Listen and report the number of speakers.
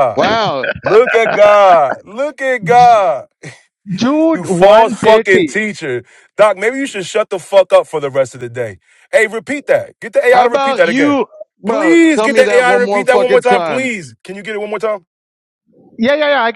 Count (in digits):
3